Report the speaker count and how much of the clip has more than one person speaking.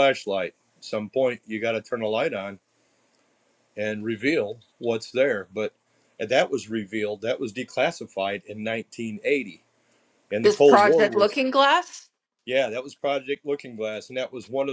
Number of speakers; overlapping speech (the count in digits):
2, about 6%